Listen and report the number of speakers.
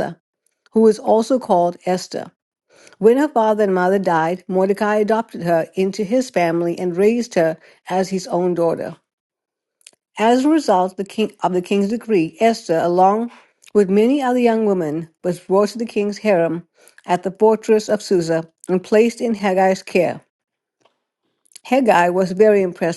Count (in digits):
1